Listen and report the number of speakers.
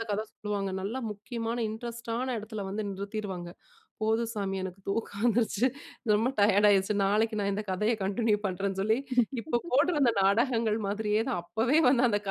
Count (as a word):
one